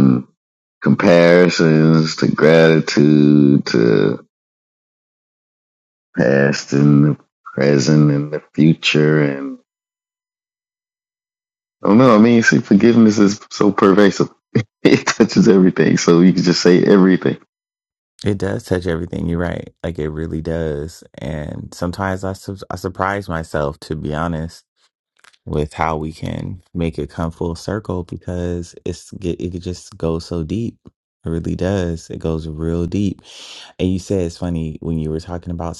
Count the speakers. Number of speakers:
two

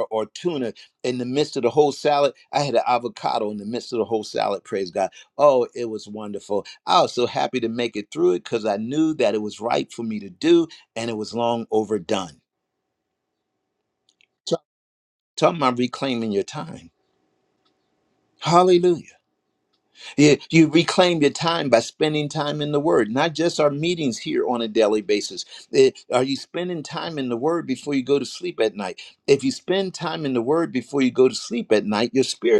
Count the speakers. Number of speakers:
one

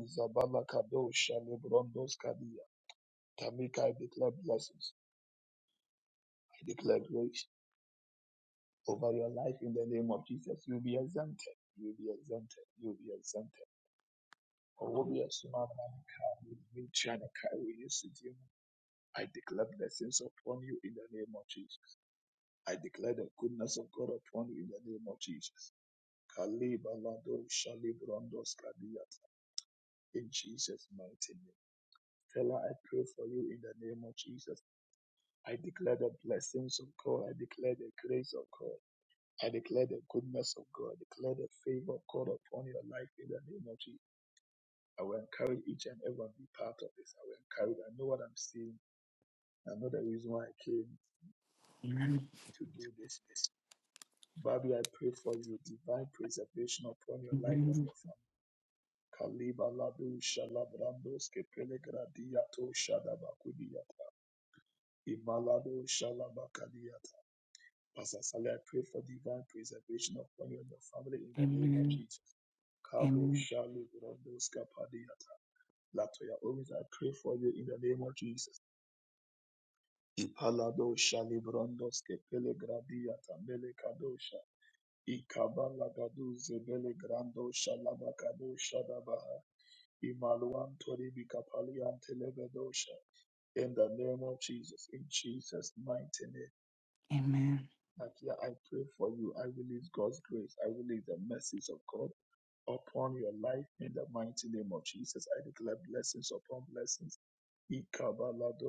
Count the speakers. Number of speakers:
two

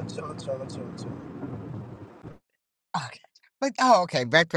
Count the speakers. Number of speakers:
two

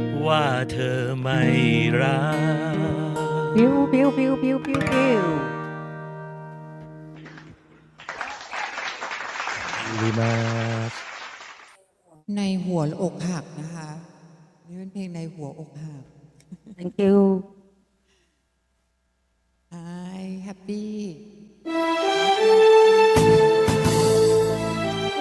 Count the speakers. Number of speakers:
three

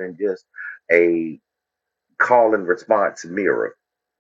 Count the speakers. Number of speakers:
one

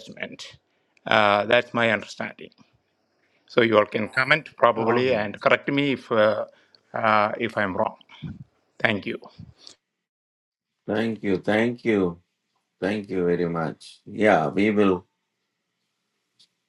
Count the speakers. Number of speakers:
two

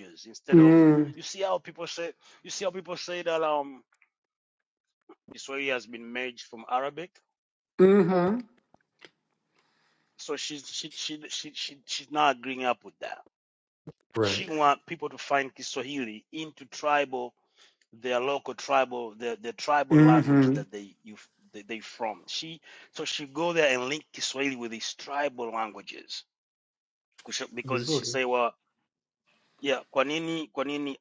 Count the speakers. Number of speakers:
two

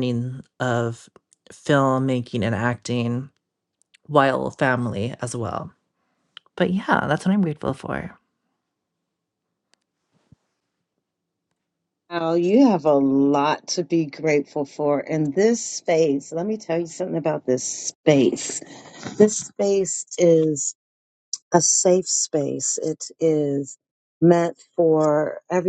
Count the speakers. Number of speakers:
two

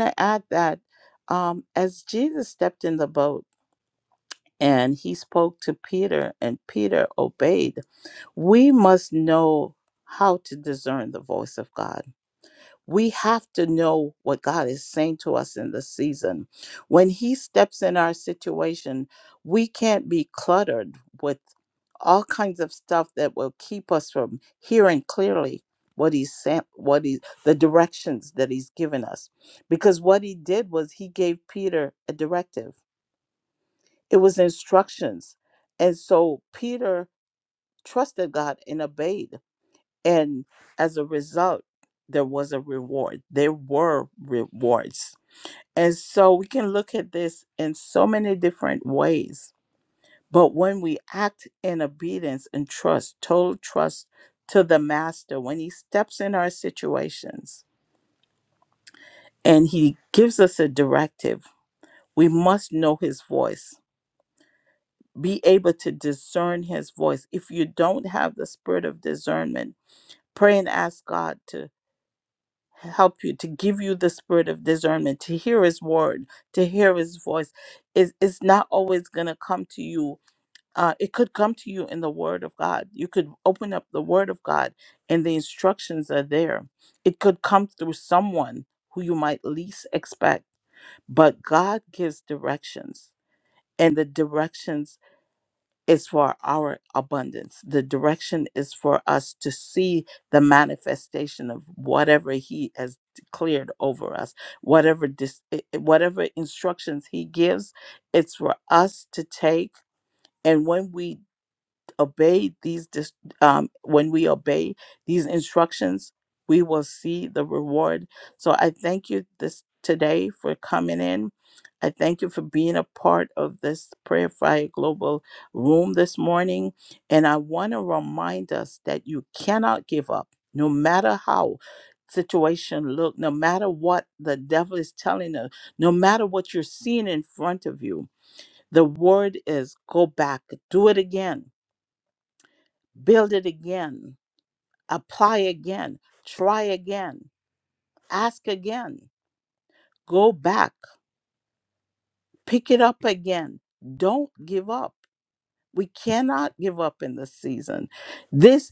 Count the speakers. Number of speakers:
one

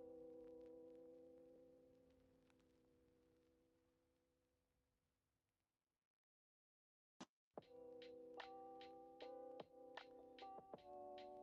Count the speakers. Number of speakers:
zero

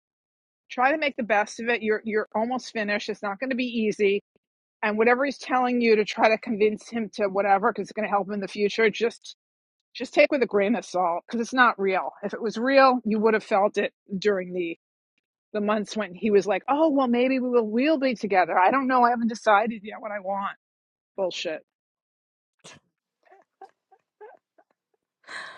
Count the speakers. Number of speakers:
one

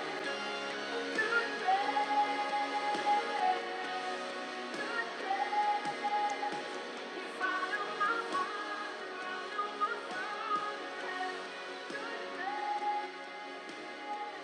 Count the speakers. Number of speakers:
zero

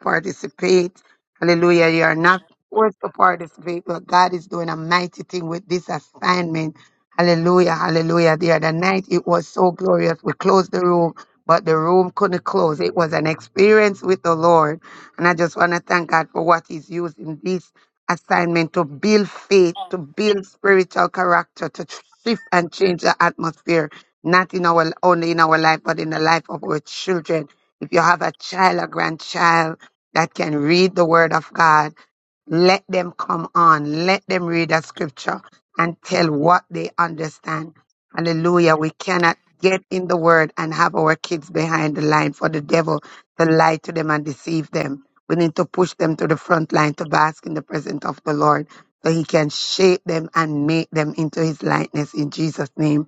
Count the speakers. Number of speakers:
one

